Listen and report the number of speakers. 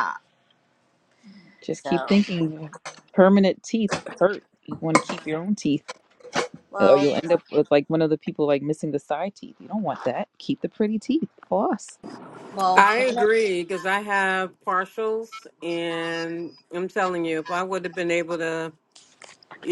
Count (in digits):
3